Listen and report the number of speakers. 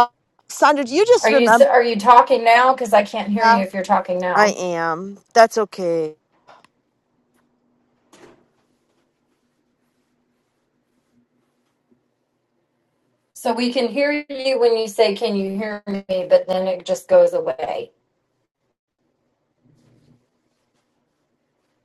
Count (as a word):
two